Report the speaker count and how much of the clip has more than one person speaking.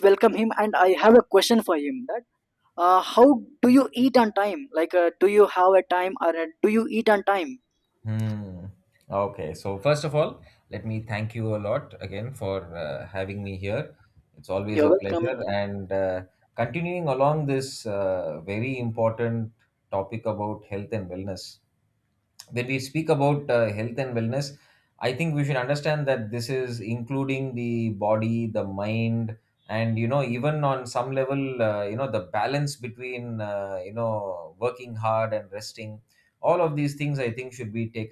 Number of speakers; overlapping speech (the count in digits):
2, about 2%